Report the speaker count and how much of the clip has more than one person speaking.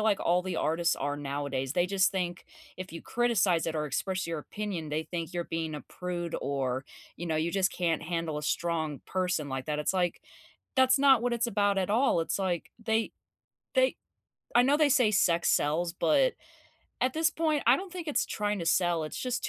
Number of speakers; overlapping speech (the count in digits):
1, no overlap